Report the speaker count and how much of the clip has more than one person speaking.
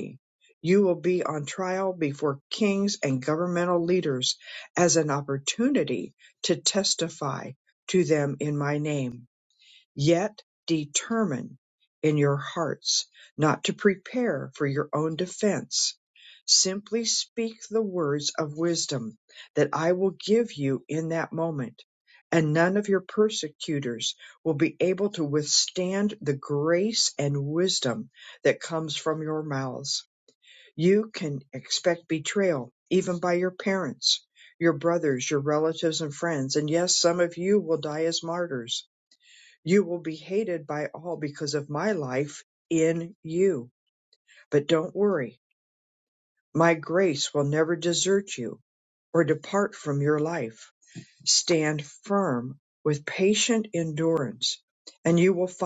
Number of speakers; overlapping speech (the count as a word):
one, no overlap